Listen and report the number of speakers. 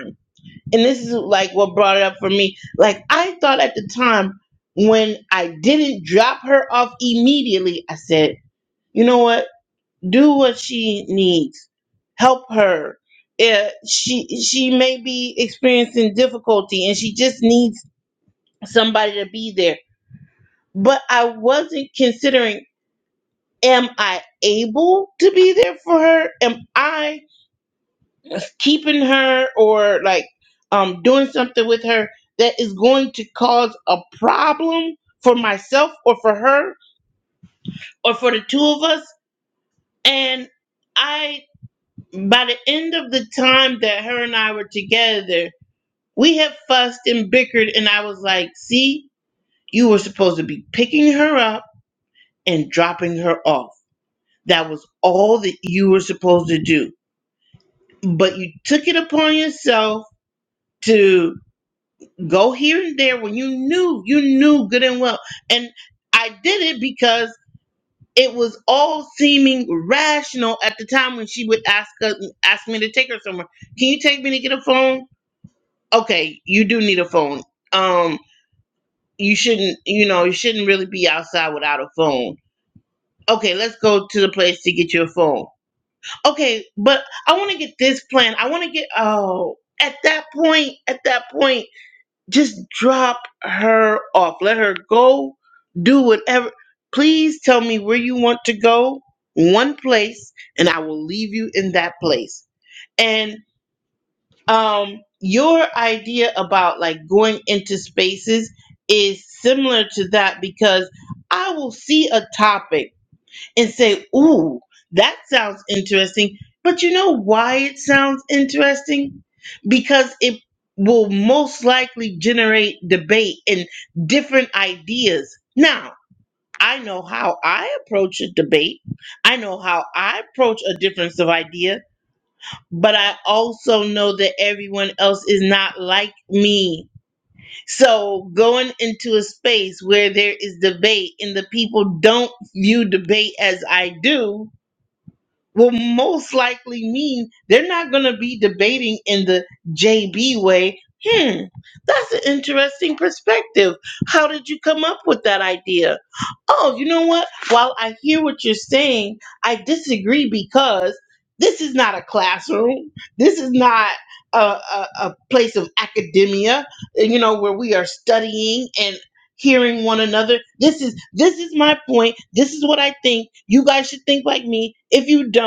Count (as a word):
one